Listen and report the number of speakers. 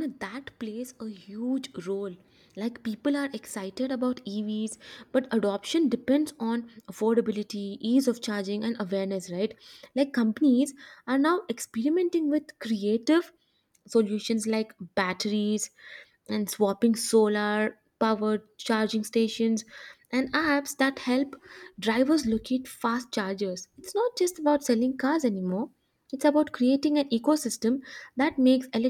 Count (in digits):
1